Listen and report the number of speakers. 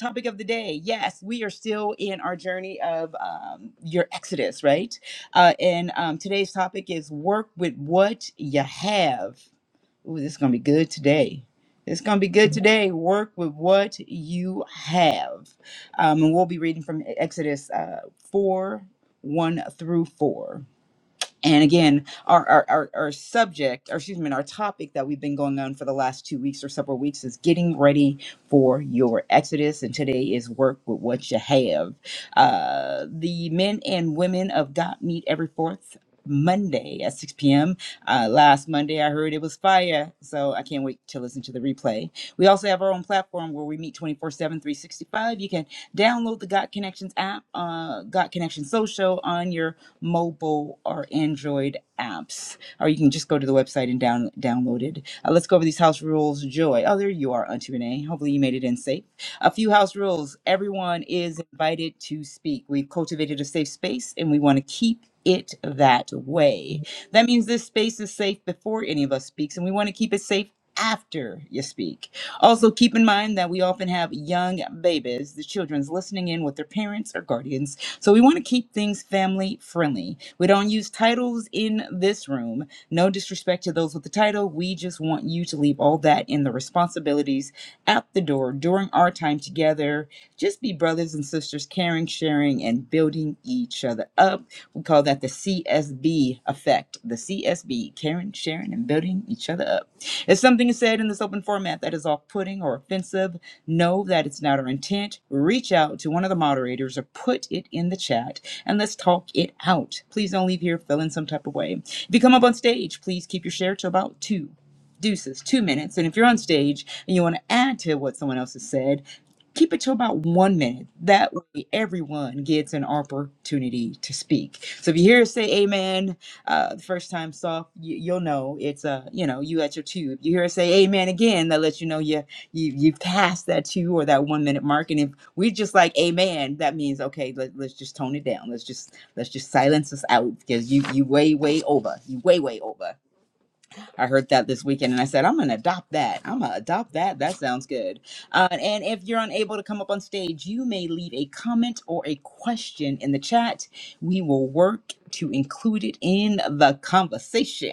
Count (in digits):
1